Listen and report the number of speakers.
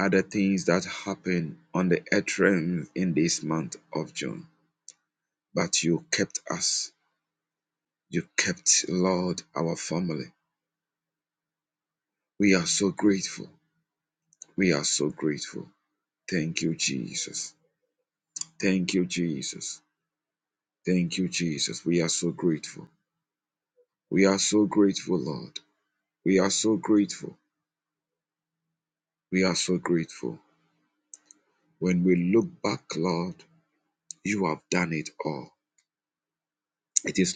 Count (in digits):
1